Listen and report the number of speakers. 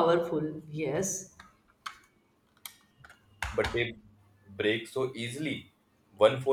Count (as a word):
two